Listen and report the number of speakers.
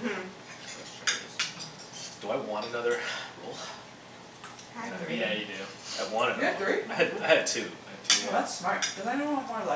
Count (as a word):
four